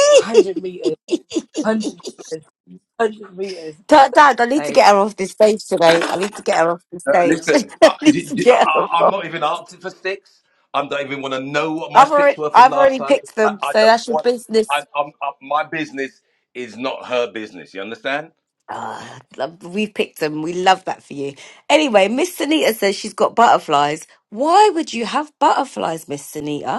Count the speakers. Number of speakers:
3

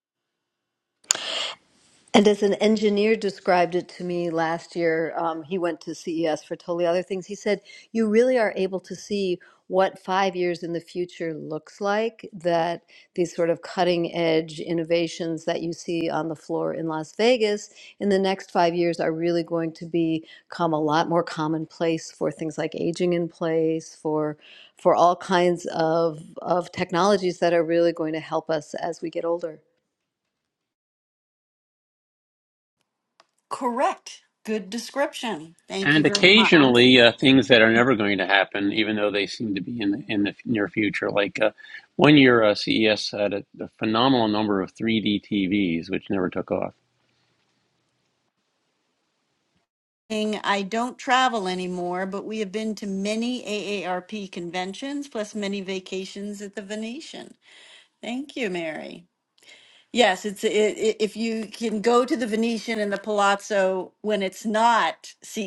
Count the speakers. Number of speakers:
3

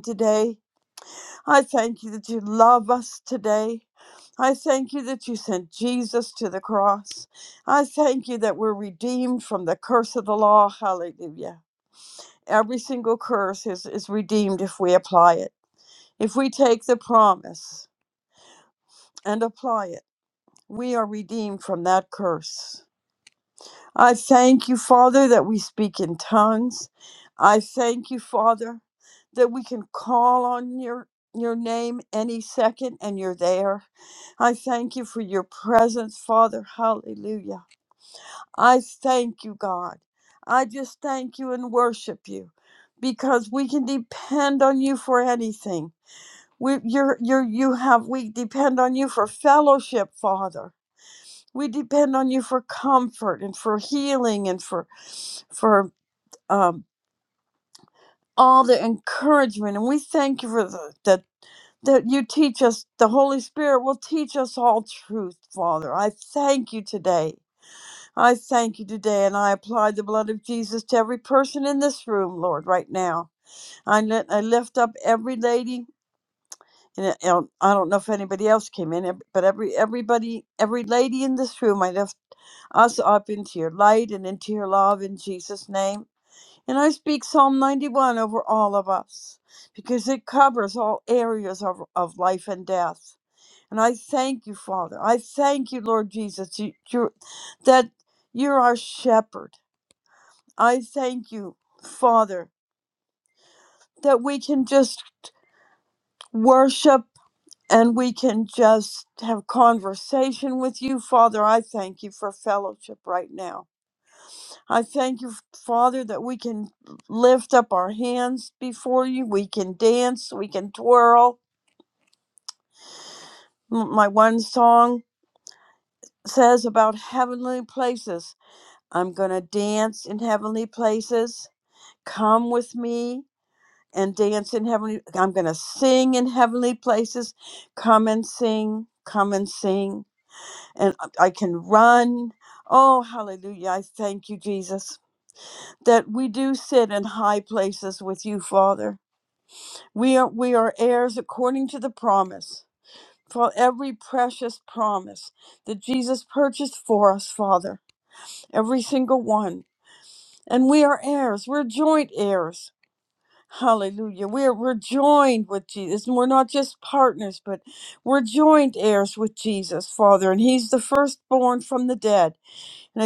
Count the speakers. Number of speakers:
1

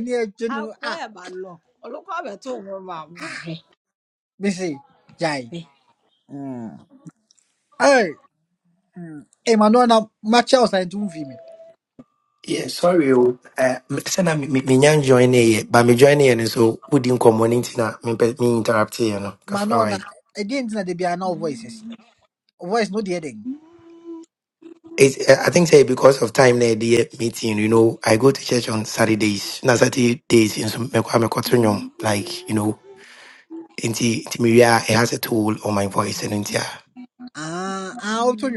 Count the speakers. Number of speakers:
3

